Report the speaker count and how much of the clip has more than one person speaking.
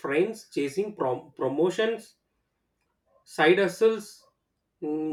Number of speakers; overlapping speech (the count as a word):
one, no overlap